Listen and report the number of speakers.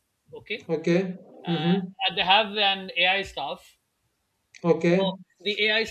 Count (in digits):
2